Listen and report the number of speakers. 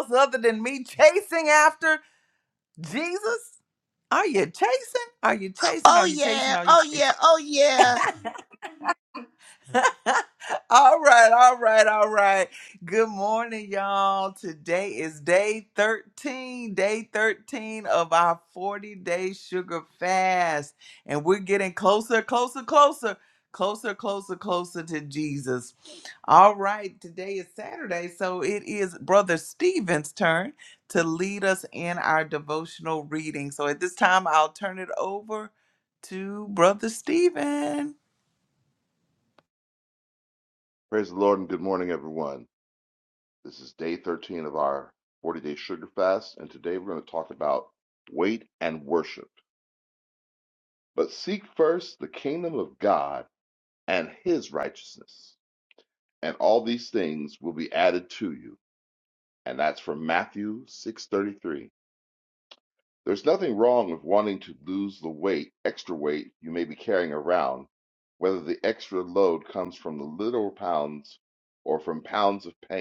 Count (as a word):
three